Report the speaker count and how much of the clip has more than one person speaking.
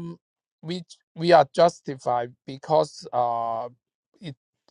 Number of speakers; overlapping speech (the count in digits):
1, no overlap